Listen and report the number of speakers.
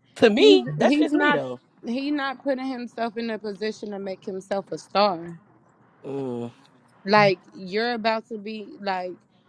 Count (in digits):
2